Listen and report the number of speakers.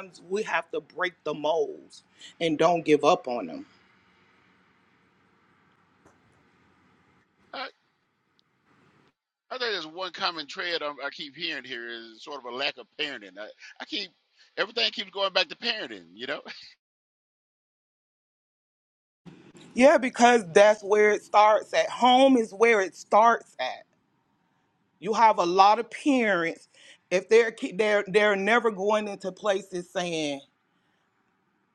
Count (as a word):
two